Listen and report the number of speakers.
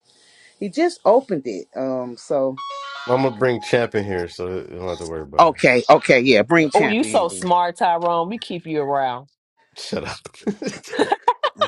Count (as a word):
three